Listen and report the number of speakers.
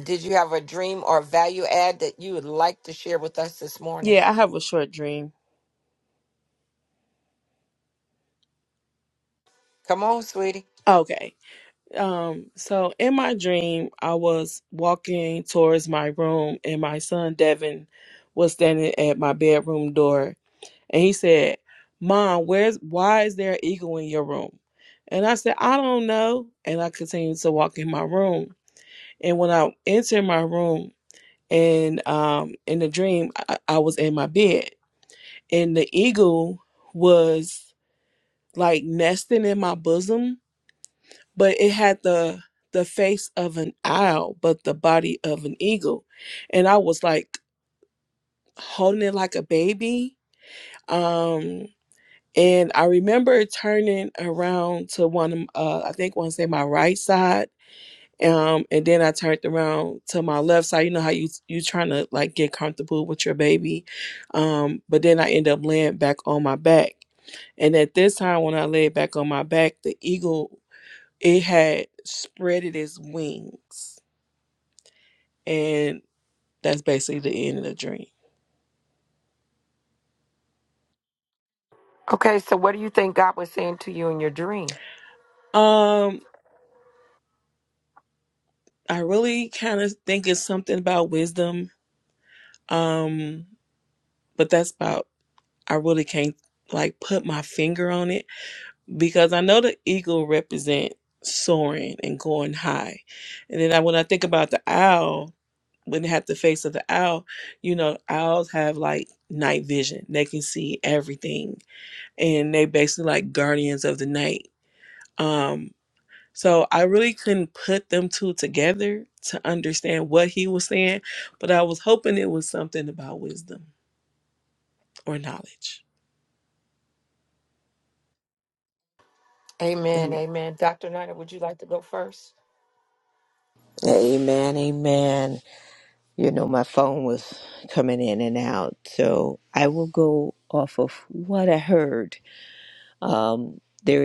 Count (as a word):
three